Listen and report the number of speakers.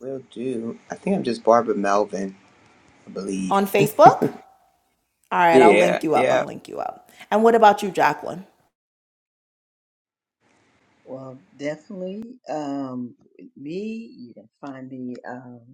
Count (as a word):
three